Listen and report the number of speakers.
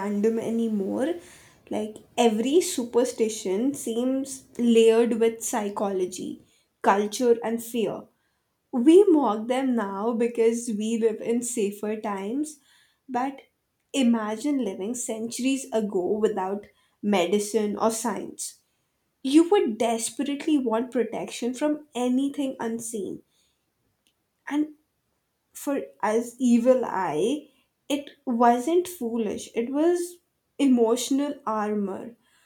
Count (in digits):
1